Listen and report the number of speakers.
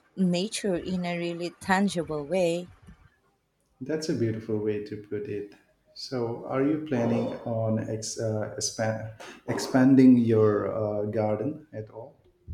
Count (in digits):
2